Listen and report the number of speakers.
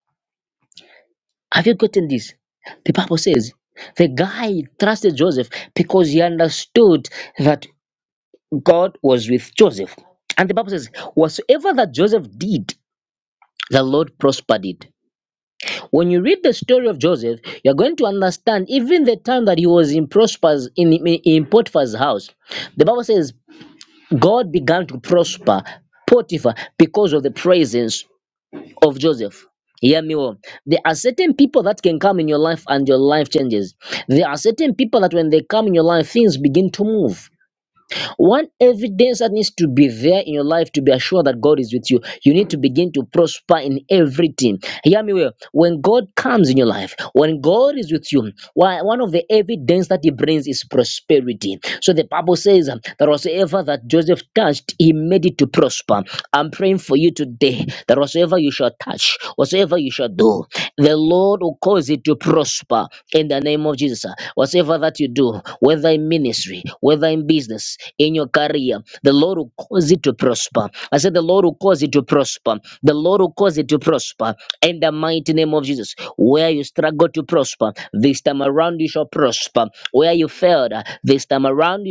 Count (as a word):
one